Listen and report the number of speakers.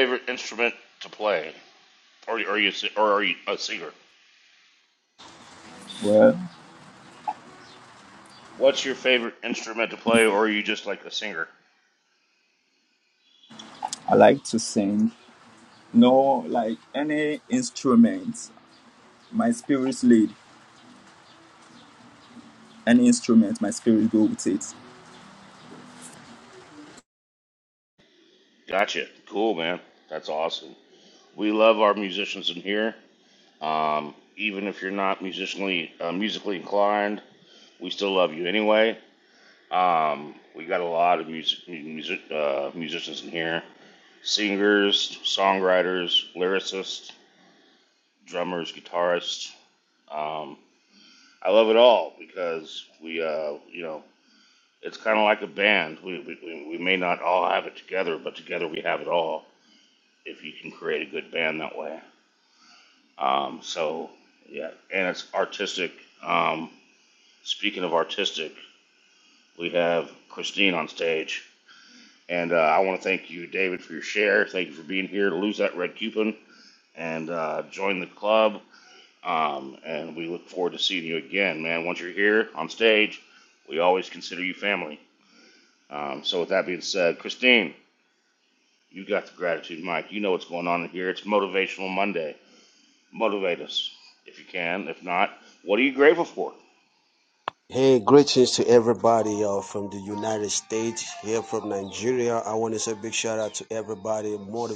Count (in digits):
3